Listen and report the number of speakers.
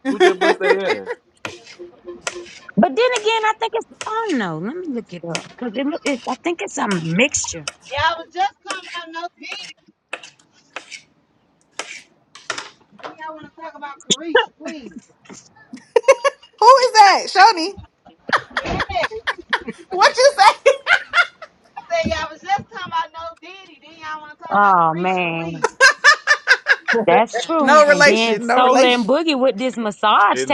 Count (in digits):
4